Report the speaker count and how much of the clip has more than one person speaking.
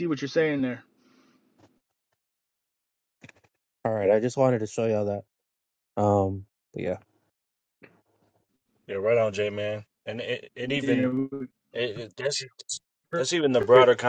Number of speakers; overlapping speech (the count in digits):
3, about 2%